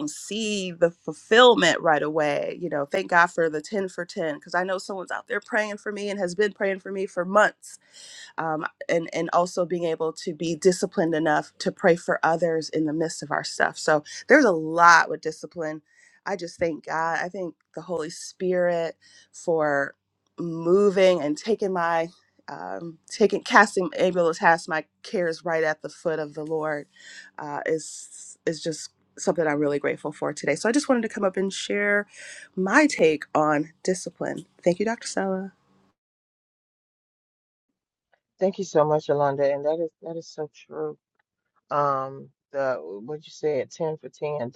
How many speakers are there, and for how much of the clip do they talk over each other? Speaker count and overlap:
two, no overlap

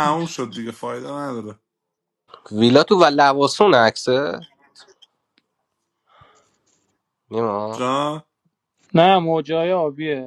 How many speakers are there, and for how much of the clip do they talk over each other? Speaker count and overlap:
three, about 4%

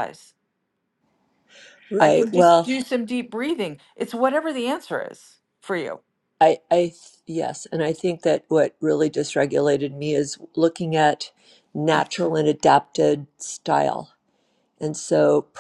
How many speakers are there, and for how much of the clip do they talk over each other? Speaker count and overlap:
two, about 4%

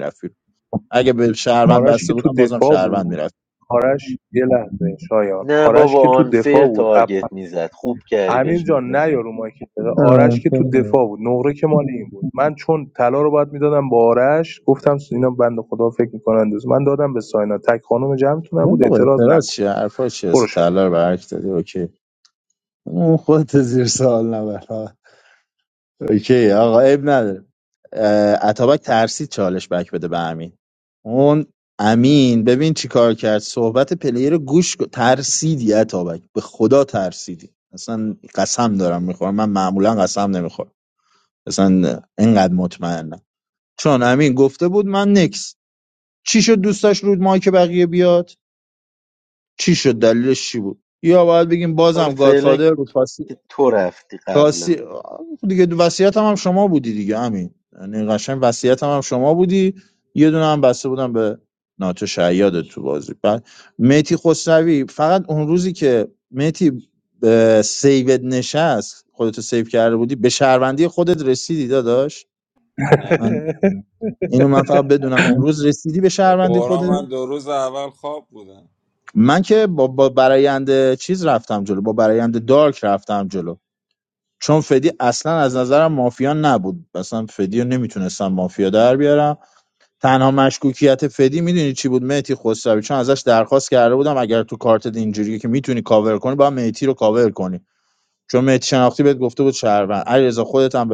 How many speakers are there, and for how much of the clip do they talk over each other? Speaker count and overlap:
four, about 7%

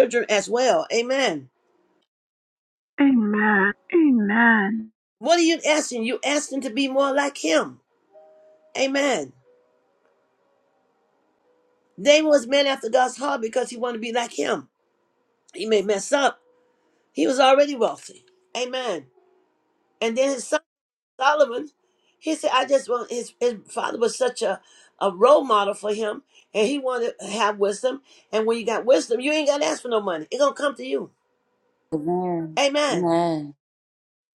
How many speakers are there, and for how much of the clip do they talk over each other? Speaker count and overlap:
three, under 1%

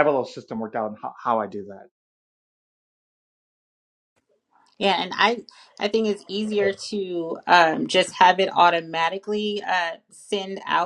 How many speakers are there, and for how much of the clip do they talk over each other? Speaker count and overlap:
two, no overlap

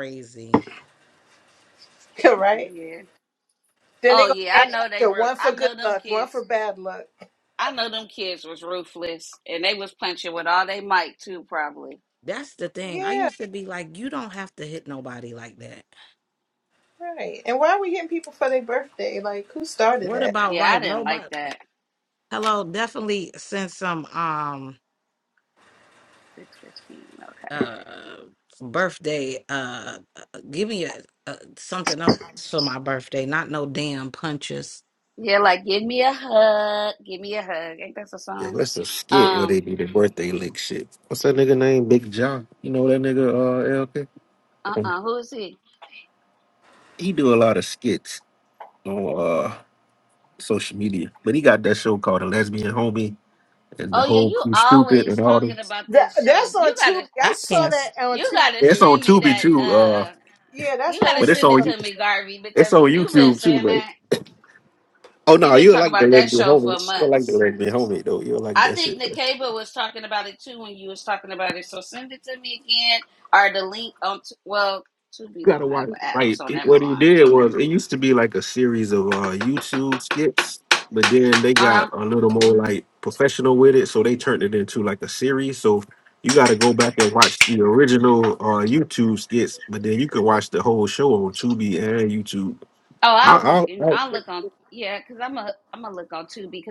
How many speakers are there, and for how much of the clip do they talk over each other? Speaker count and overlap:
four, about 17%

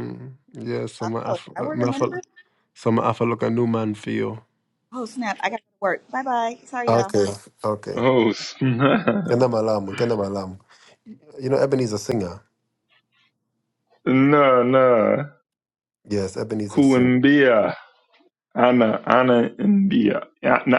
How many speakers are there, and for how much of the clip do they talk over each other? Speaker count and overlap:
three, about 9%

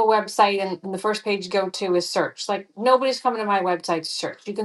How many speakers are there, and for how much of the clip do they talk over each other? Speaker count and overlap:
one, no overlap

